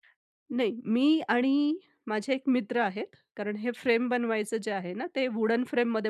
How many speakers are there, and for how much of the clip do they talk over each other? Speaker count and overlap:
one, no overlap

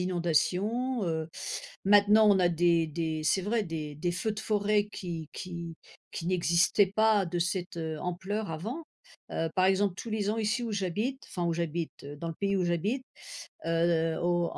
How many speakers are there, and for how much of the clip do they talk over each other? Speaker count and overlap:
one, no overlap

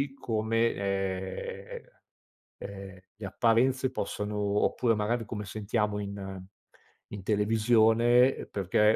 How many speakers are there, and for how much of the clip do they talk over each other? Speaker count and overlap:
one, no overlap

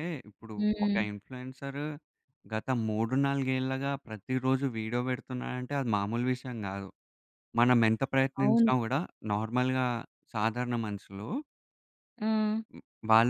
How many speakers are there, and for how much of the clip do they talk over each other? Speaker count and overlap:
two, about 6%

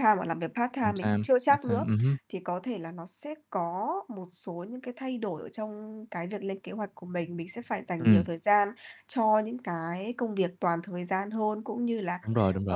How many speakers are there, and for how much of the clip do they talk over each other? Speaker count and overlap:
two, about 11%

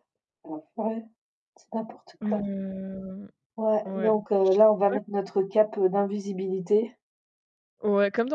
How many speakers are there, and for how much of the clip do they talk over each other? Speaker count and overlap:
two, about 8%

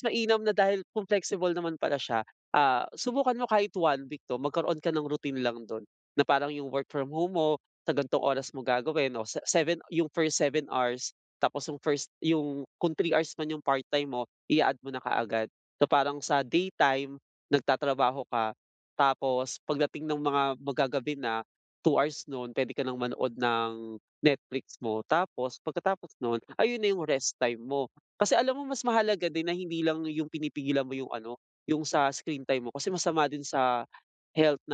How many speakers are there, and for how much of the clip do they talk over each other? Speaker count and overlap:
one, no overlap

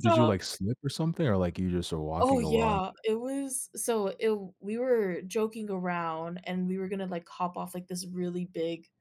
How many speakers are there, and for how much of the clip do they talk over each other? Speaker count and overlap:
two, about 10%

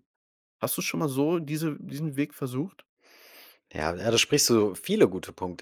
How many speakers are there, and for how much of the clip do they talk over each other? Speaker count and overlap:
two, no overlap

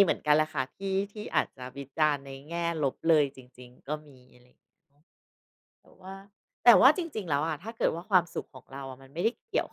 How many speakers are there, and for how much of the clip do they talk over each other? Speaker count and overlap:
one, no overlap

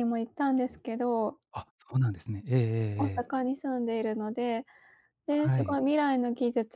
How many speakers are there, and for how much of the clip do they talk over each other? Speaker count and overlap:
two, about 8%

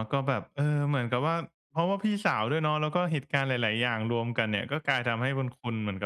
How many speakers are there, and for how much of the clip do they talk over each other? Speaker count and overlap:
one, no overlap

